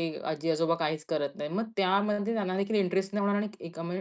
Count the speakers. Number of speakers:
1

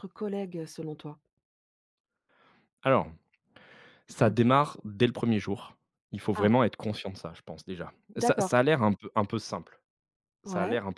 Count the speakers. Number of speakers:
2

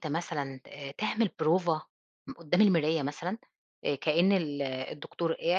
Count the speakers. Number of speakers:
1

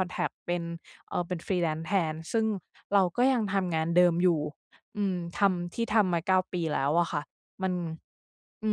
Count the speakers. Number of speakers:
1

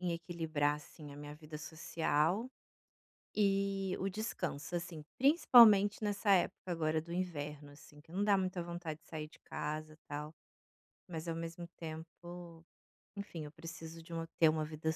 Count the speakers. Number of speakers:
1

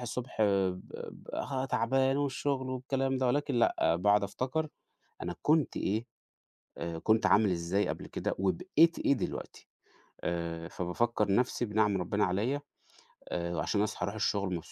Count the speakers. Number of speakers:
1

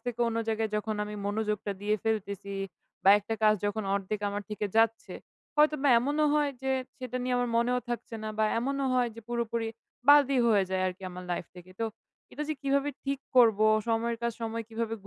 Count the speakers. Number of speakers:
1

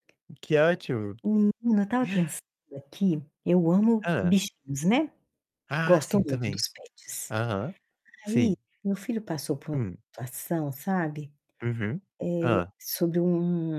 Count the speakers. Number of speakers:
2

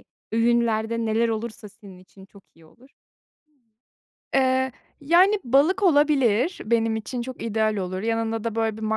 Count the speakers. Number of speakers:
2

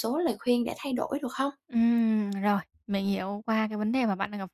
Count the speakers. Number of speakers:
2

